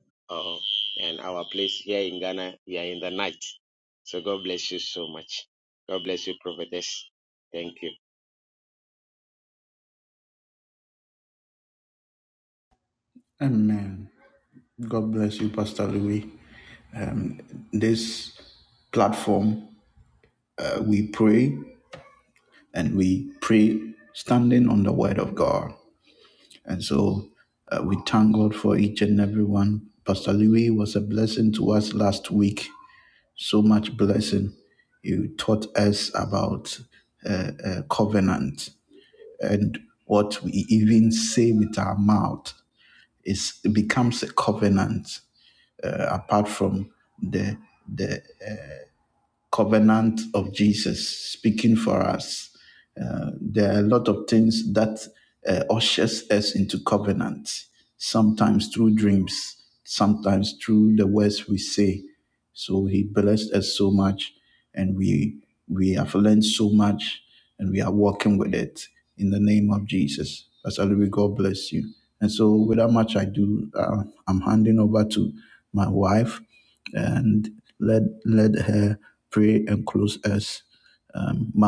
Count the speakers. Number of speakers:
two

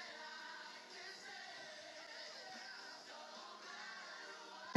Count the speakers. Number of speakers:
zero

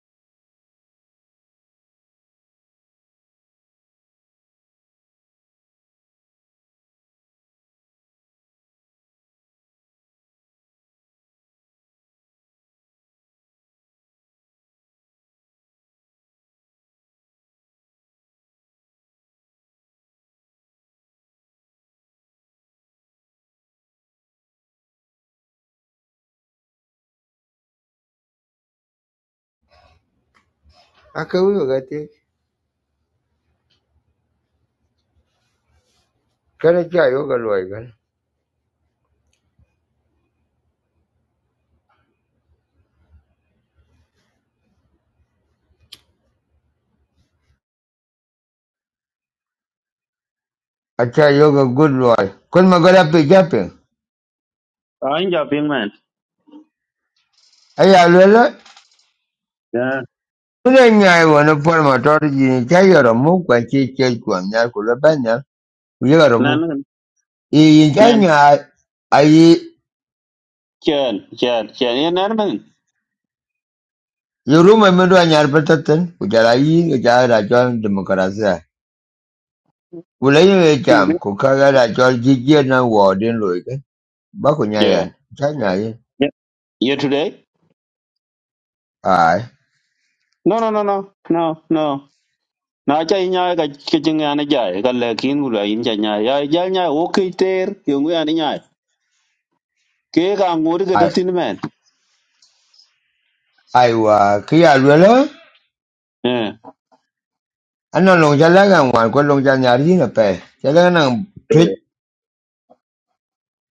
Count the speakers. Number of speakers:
two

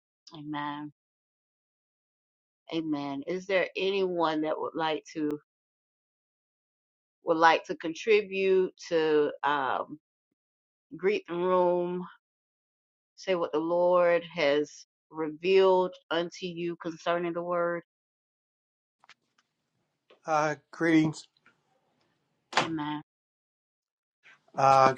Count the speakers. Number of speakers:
two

